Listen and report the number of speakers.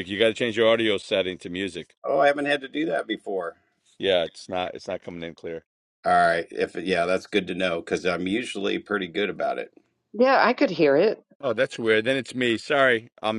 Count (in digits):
3